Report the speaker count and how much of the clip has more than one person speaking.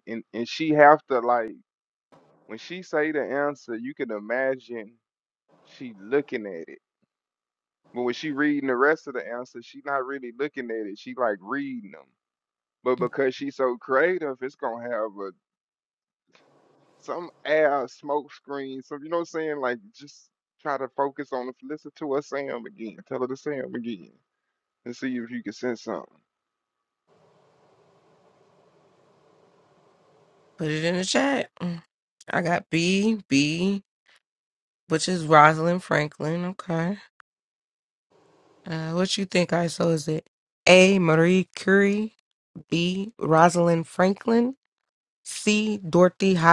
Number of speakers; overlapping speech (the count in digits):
2, no overlap